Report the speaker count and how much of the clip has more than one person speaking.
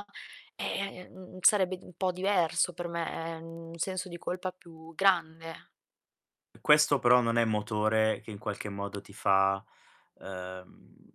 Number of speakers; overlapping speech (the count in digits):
2, no overlap